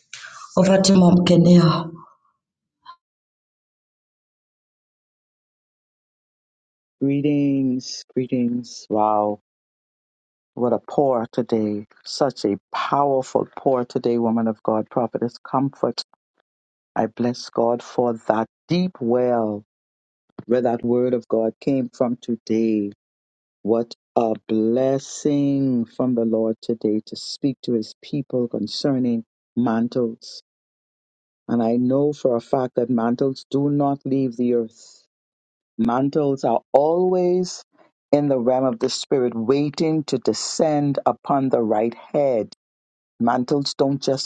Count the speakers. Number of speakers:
2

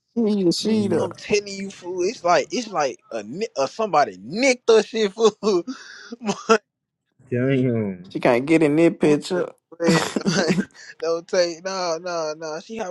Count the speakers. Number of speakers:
3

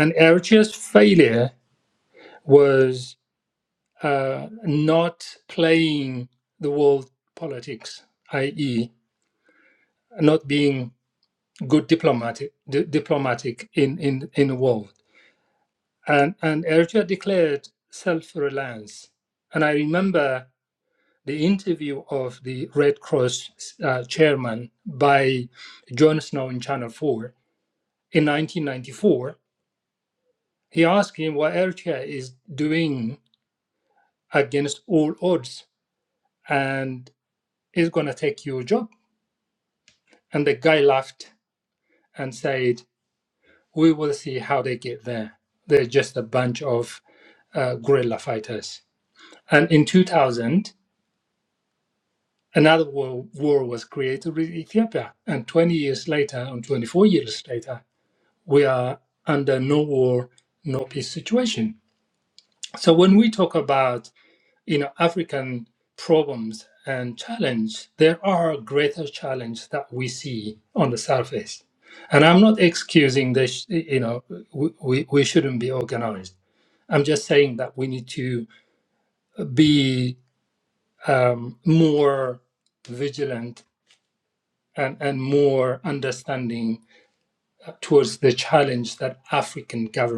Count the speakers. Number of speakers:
1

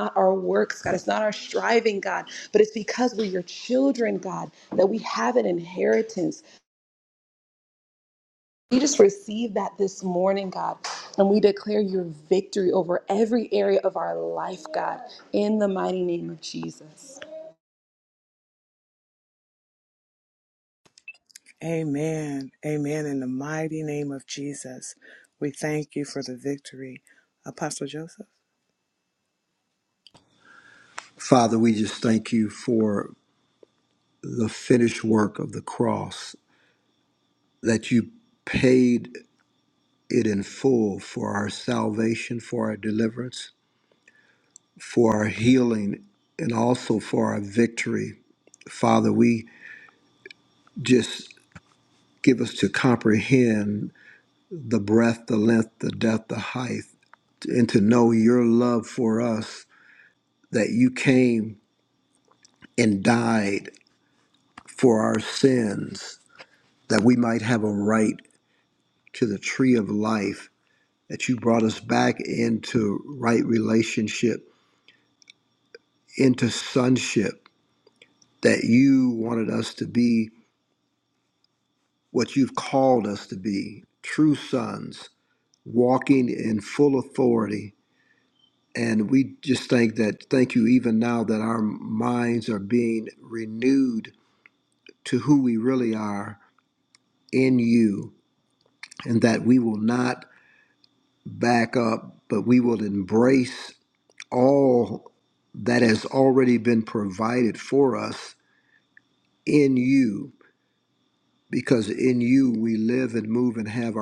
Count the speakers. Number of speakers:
3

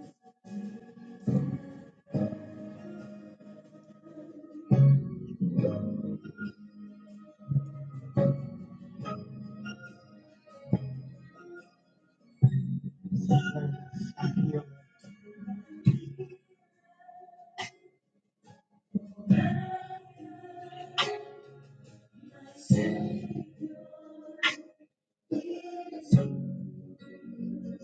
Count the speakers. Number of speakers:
0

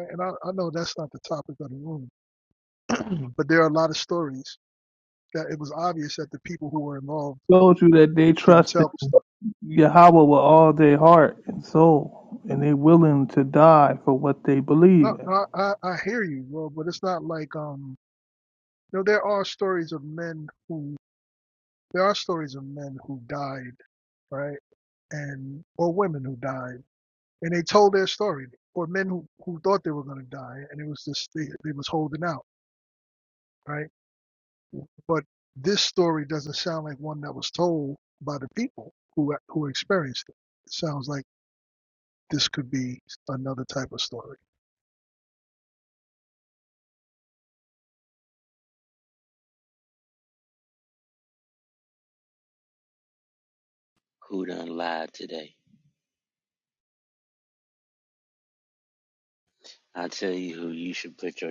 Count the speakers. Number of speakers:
3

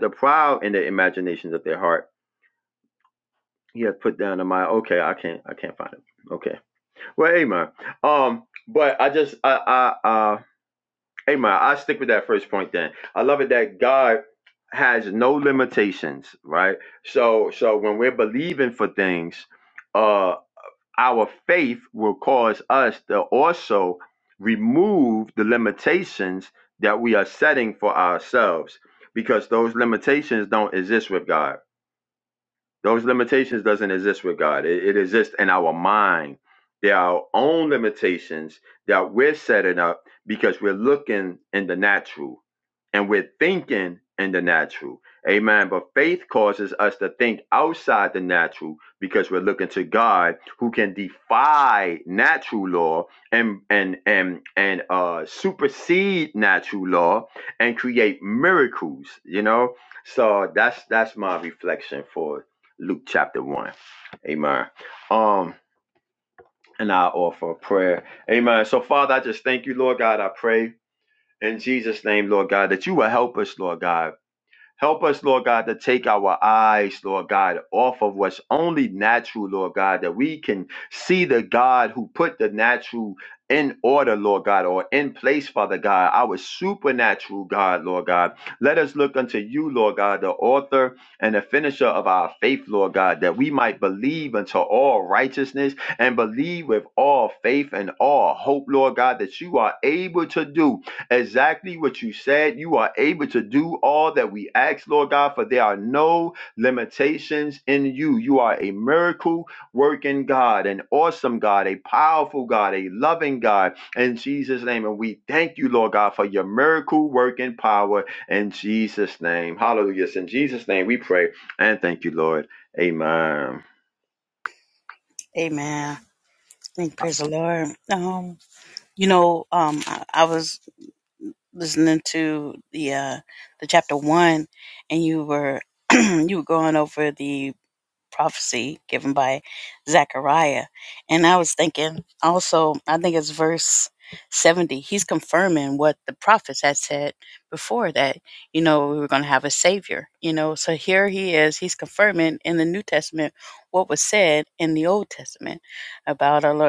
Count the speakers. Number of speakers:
2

